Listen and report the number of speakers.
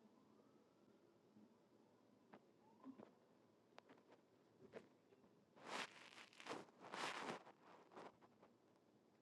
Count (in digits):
0